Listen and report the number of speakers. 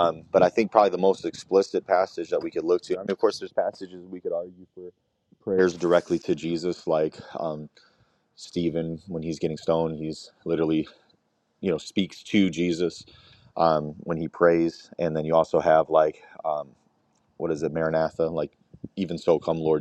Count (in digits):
1